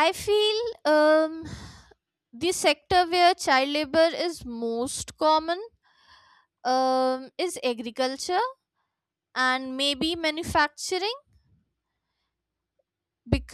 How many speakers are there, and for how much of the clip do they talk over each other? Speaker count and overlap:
1, no overlap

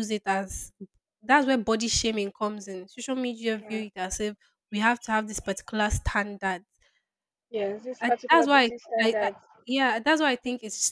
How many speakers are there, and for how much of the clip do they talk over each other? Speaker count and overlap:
2, about 14%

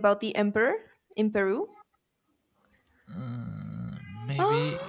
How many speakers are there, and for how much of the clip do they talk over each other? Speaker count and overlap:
2, no overlap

